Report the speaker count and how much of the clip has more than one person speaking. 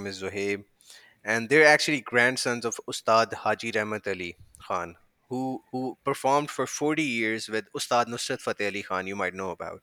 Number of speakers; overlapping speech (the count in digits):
1, no overlap